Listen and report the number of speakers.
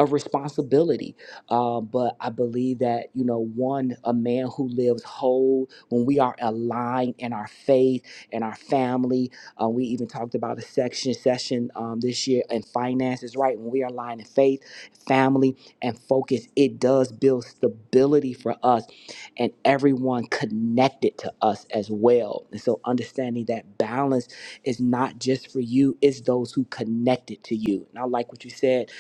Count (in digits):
1